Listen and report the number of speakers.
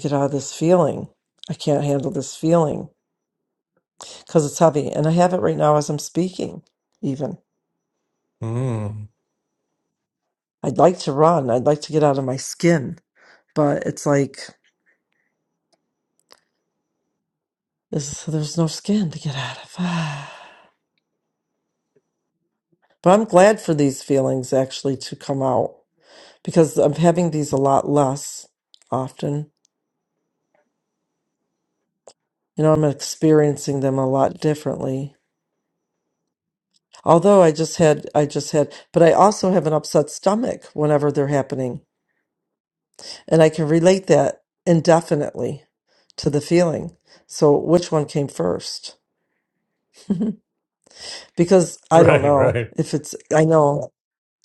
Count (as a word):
two